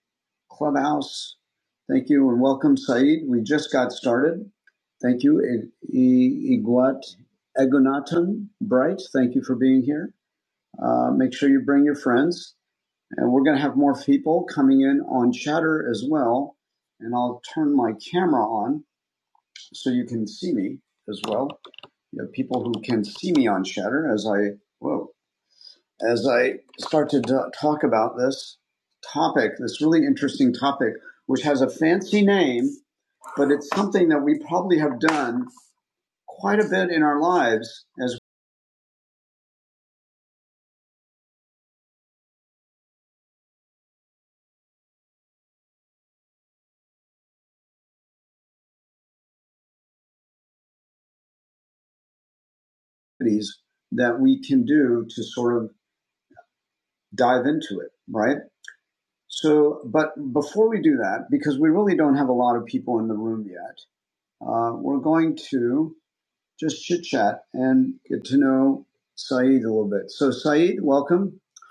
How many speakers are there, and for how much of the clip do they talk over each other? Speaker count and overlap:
1, no overlap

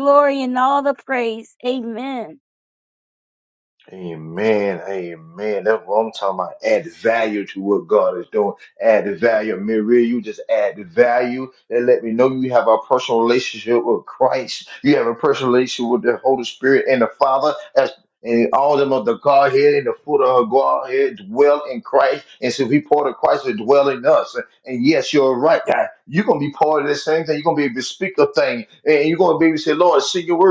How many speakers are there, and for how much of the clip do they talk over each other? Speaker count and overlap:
2, no overlap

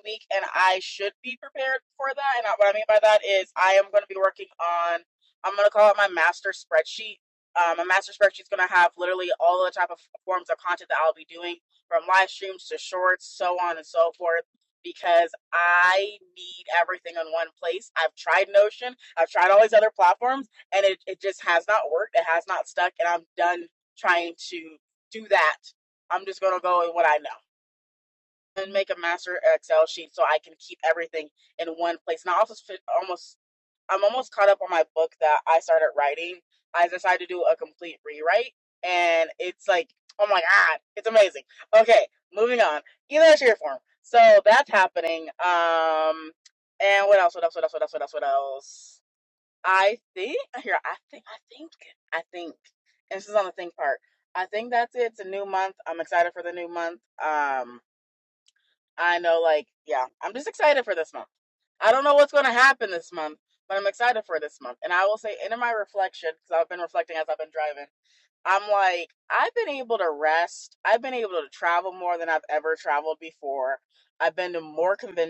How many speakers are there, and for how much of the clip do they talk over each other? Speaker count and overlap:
1, no overlap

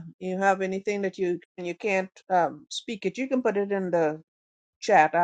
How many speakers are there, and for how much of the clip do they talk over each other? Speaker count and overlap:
1, no overlap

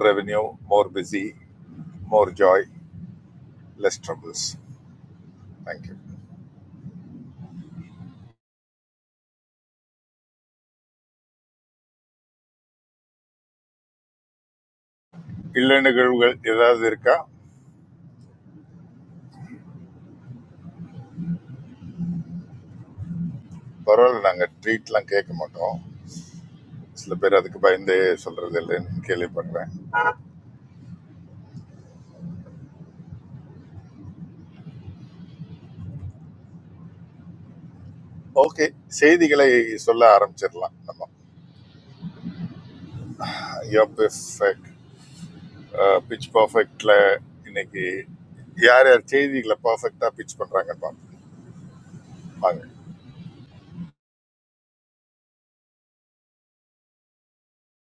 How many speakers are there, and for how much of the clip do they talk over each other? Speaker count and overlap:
1, no overlap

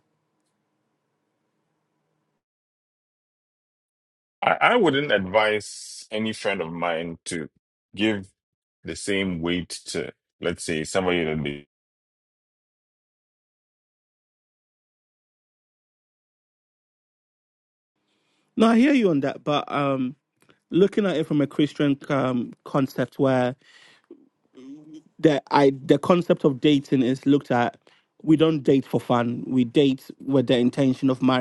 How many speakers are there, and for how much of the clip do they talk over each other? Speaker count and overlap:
2, no overlap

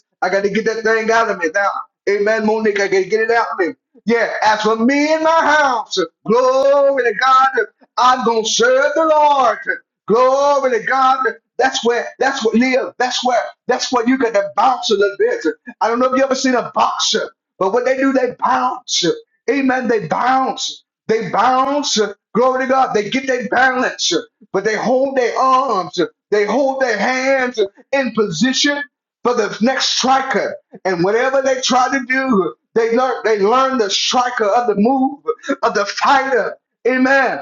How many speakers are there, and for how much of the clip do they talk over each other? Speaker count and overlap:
1, no overlap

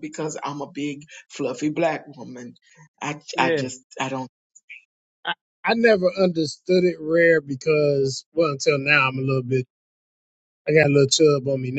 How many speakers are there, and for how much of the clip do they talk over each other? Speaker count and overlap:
2, about 3%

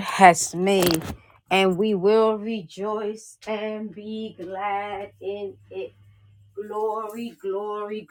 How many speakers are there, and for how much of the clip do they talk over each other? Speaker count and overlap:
1, no overlap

